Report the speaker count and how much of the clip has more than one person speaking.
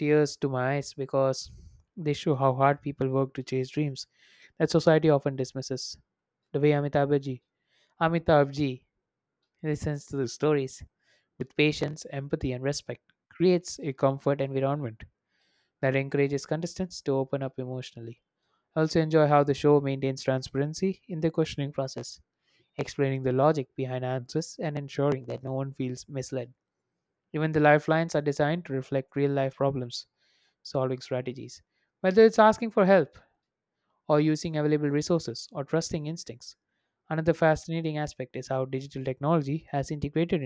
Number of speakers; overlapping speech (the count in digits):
1, no overlap